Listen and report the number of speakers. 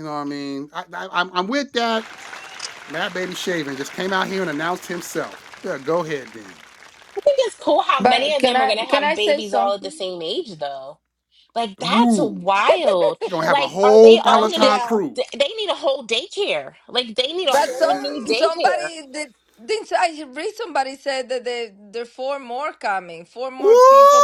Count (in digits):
3